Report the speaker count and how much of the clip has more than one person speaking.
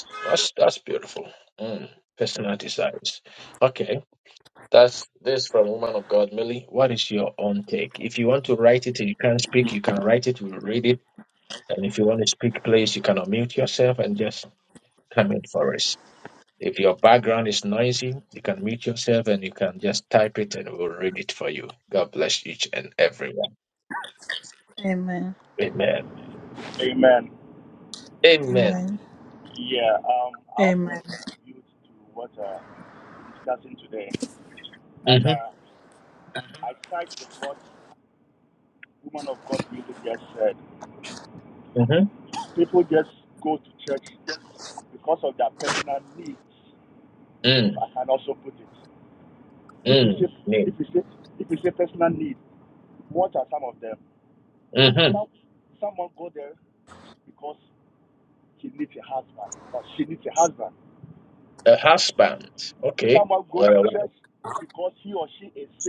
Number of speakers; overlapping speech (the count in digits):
3, about 3%